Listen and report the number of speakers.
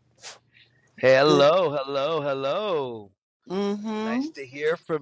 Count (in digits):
2